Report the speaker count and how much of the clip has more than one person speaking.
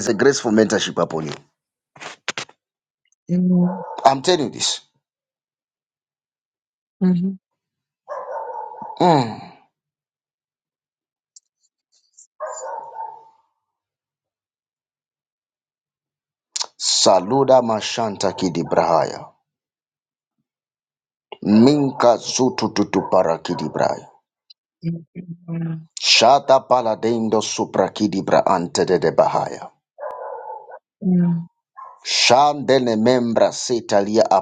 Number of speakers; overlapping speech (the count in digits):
2, no overlap